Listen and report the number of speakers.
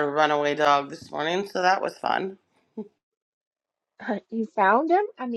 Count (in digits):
2